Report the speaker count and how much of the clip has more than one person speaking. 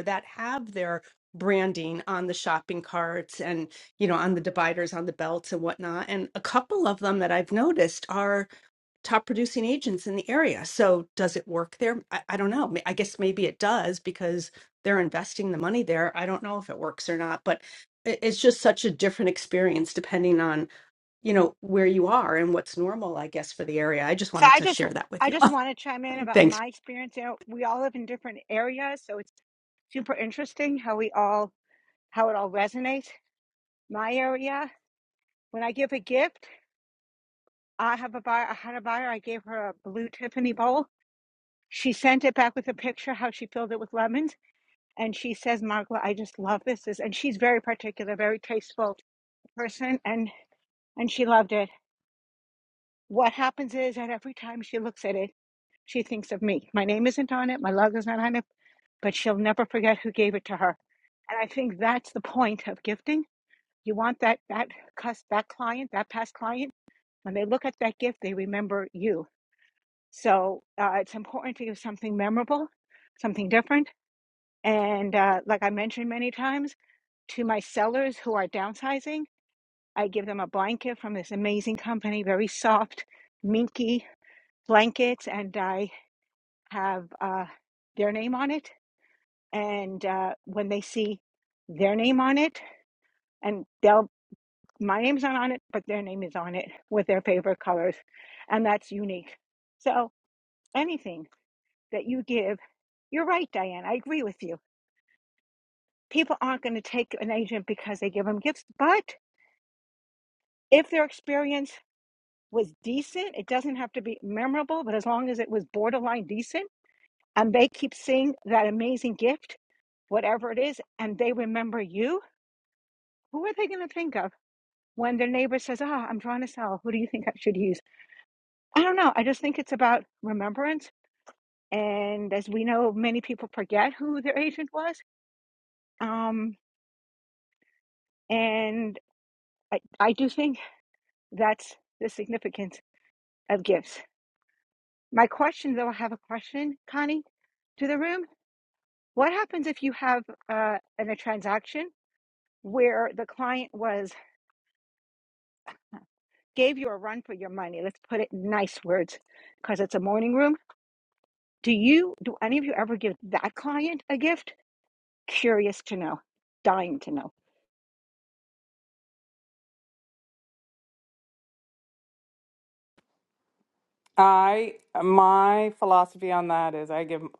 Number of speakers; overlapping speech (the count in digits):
3, under 1%